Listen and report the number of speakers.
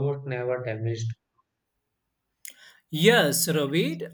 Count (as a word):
two